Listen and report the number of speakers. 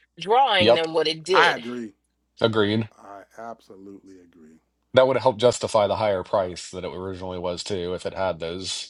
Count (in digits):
3